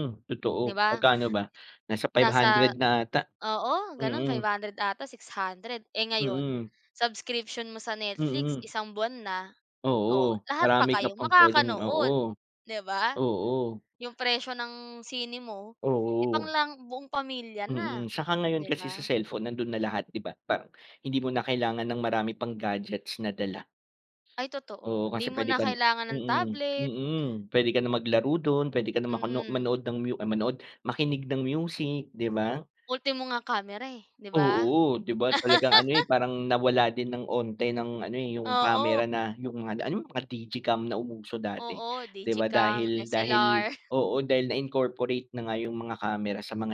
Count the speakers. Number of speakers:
2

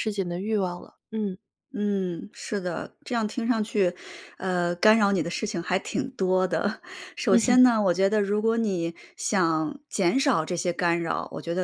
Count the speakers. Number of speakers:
2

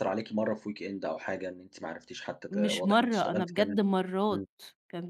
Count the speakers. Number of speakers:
2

